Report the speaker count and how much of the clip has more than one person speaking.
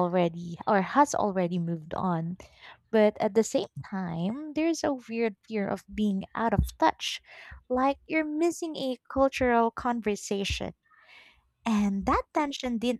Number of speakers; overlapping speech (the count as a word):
one, no overlap